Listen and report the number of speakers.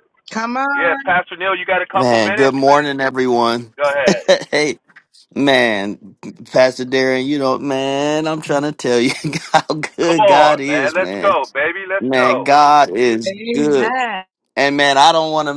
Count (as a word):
three